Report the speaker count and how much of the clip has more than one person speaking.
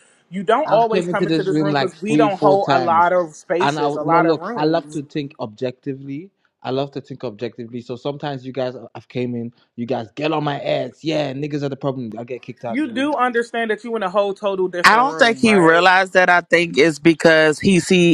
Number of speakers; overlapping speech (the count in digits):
3, about 29%